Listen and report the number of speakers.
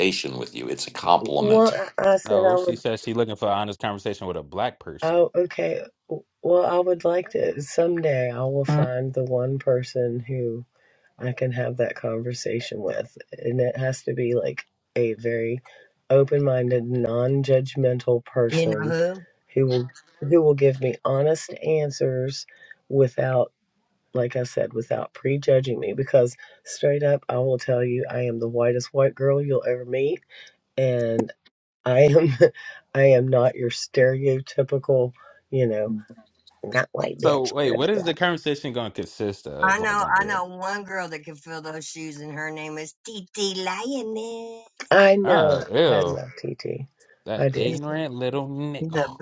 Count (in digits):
4